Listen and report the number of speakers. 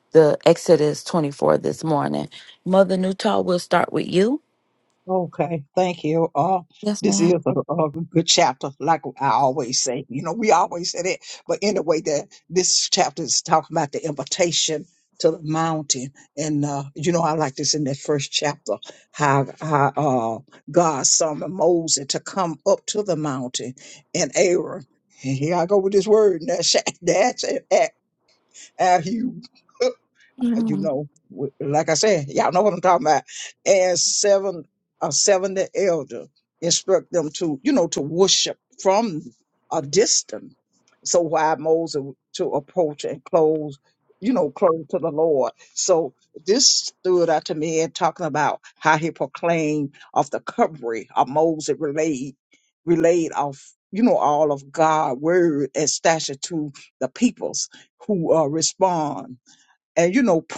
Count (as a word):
two